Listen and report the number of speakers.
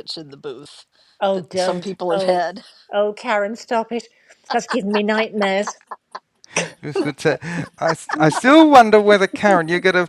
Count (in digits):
3